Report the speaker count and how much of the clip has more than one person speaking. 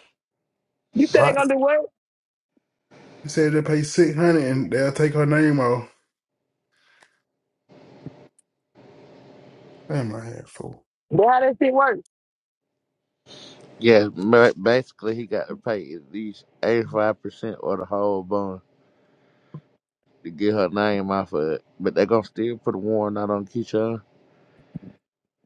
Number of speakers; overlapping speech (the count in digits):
3, about 1%